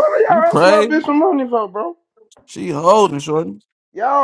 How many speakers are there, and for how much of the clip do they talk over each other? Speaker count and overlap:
two, about 17%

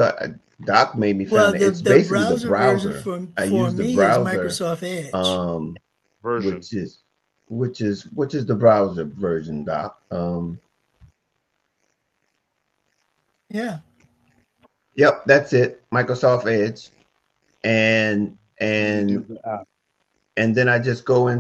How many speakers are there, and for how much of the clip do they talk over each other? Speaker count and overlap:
three, about 18%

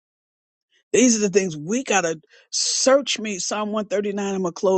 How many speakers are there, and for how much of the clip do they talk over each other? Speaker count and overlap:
one, no overlap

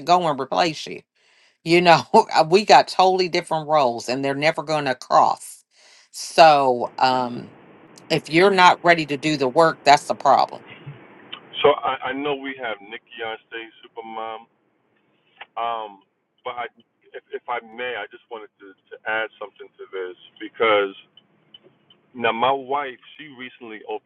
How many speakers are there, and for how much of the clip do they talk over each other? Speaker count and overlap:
two, no overlap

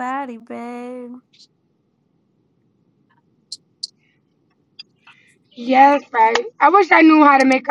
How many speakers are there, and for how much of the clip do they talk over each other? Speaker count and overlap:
two, no overlap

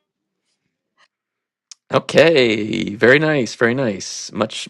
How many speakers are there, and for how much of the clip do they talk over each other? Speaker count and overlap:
one, no overlap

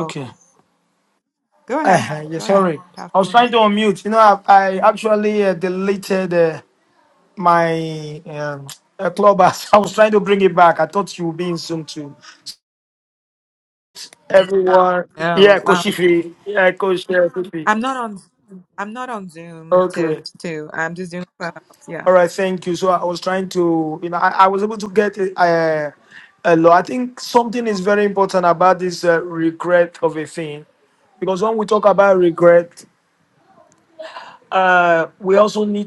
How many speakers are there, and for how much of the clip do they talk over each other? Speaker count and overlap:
two, about 8%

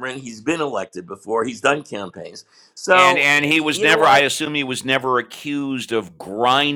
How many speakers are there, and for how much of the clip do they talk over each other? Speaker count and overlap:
two, about 20%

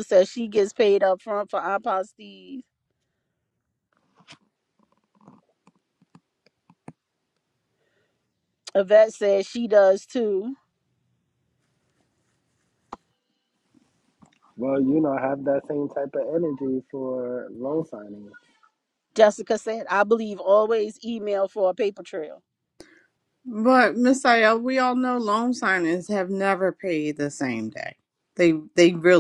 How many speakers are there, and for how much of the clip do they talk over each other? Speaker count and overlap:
three, no overlap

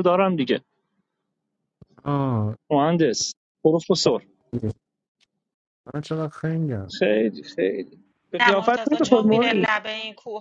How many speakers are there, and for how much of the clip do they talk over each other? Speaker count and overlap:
three, about 12%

